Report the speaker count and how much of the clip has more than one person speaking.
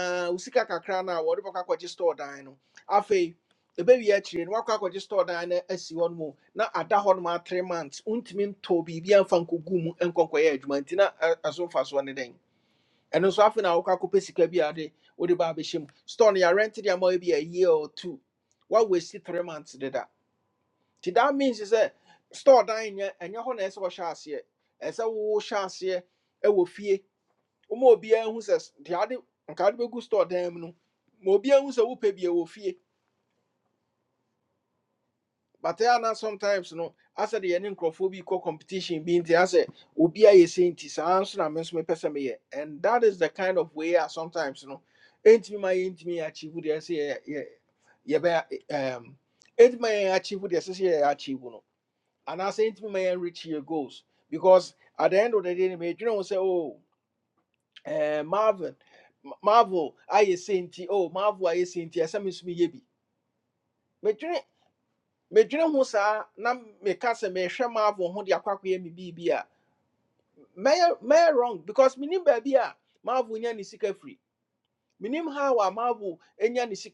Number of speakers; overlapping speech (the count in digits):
1, no overlap